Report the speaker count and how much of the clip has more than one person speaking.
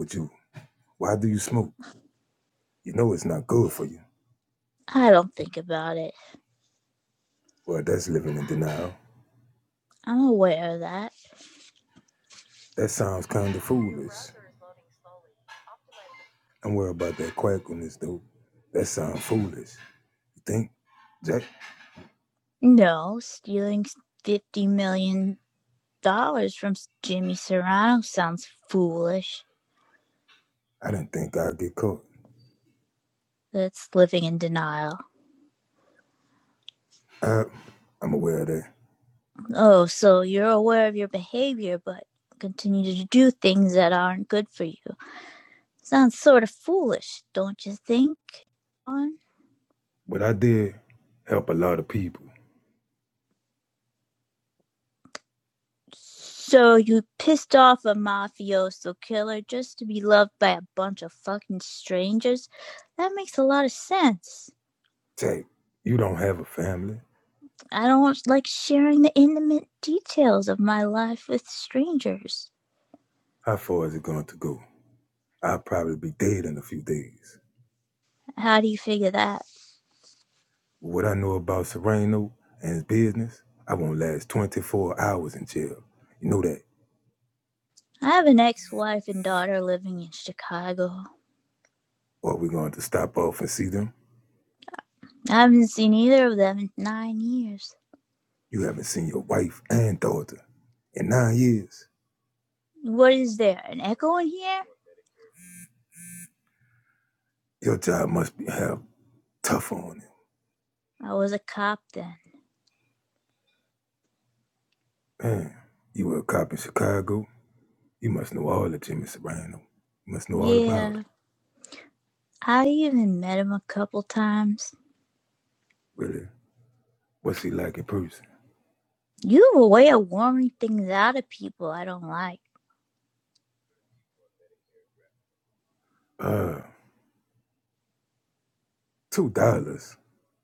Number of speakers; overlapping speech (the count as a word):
two, under 1%